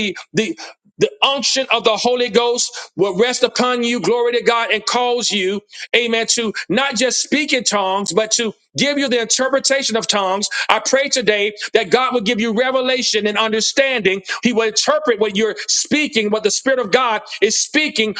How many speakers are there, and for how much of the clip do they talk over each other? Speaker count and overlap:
1, no overlap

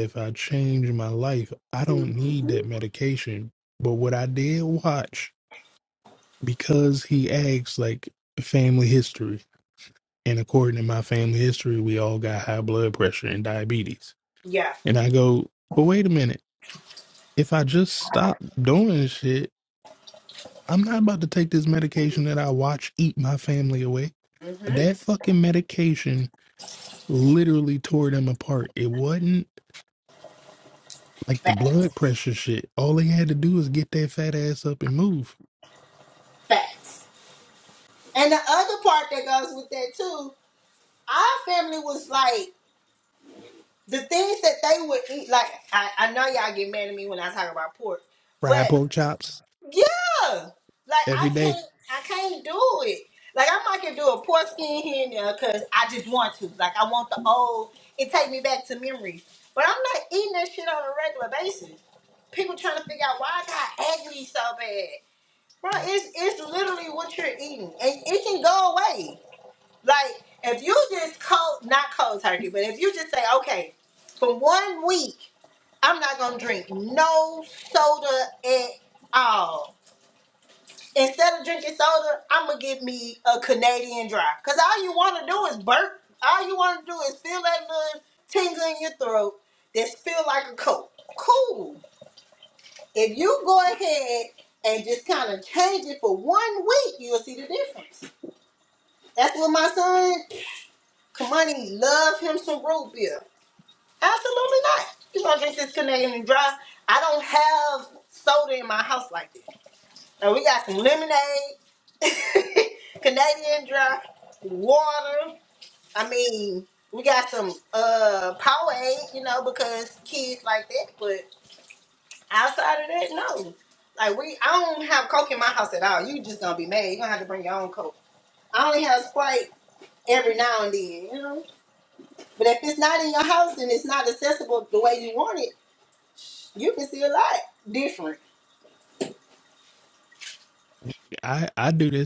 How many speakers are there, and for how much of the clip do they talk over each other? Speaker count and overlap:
2, about 1%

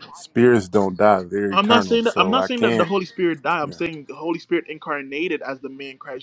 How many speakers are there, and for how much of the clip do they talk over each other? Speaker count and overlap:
2, about 26%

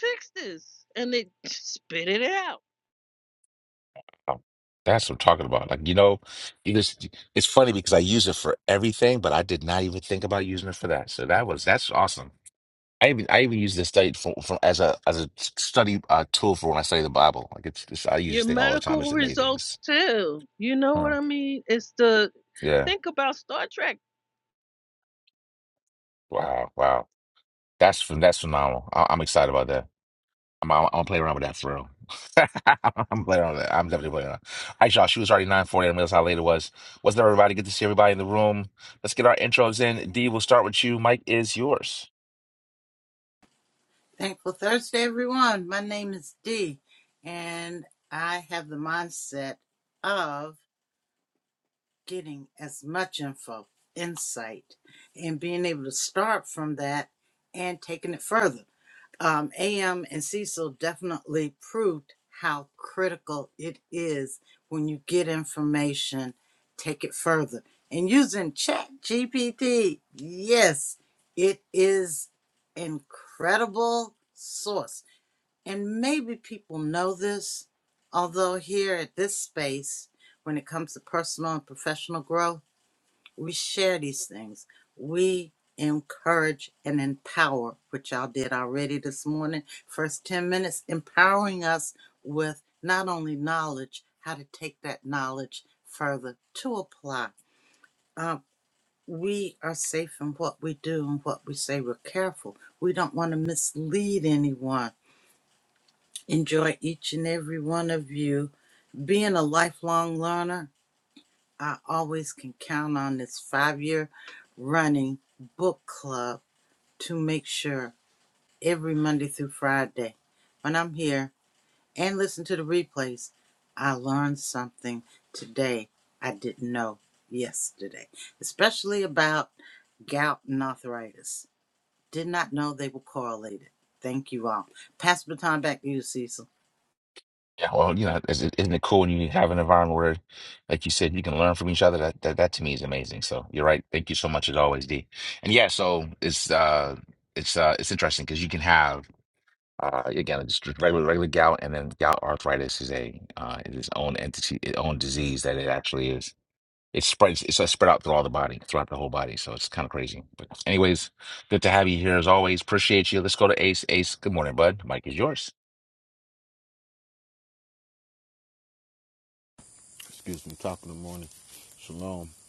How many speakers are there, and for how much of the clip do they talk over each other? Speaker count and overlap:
4, about 1%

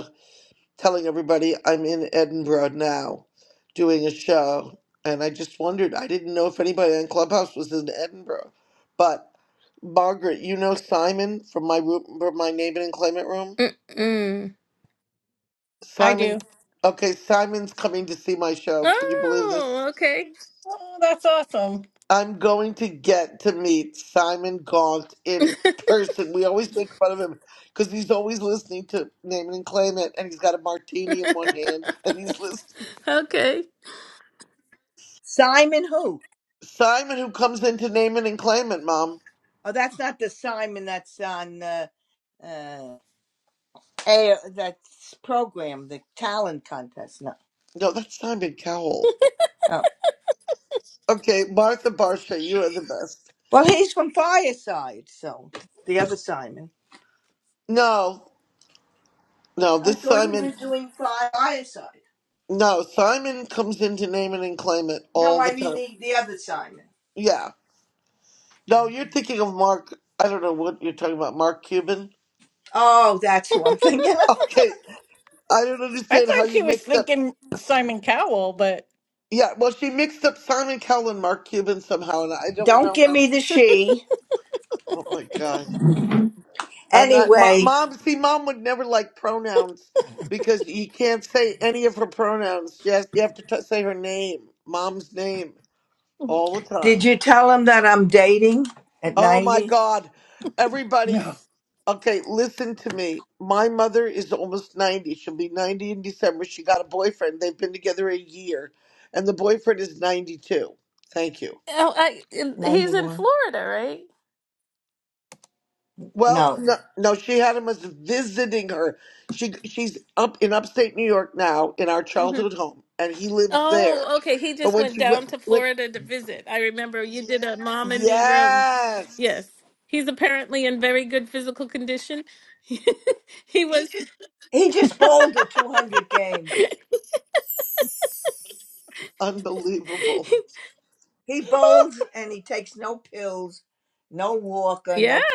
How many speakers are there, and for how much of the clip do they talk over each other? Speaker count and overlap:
4, about 7%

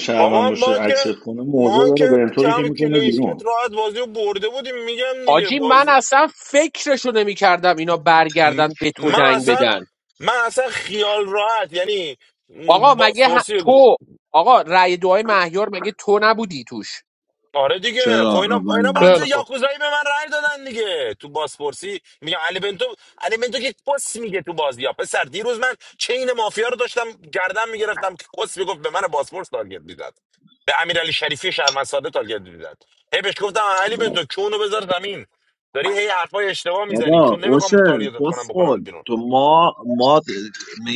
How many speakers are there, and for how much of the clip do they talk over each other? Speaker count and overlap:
4, about 22%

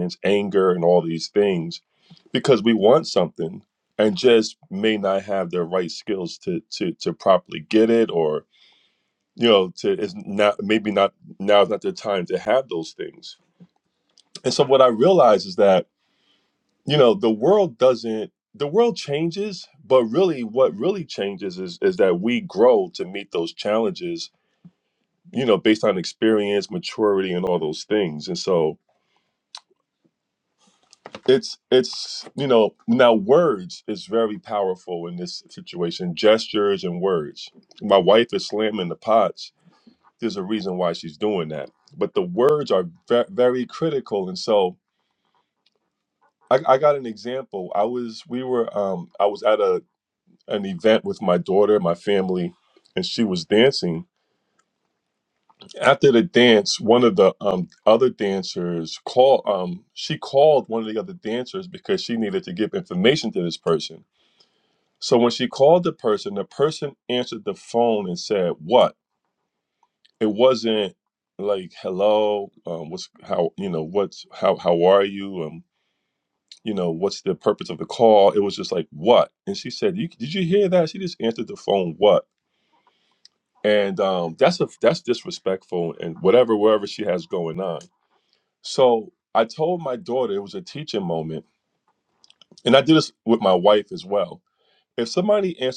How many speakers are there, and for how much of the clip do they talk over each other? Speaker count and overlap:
1, no overlap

